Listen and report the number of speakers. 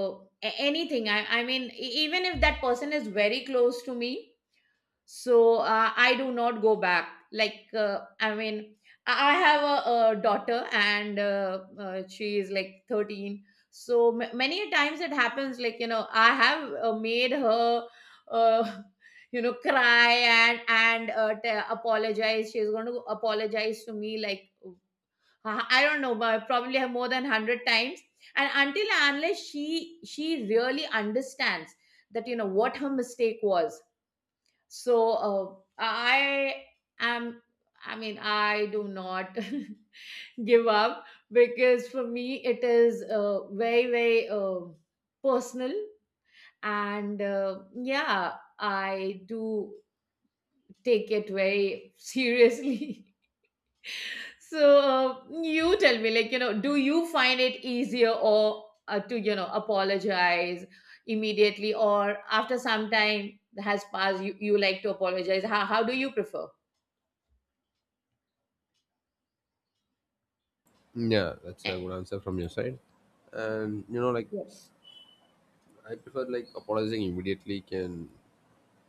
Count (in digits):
2